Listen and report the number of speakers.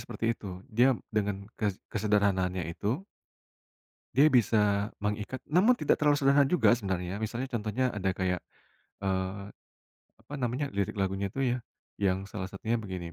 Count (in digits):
1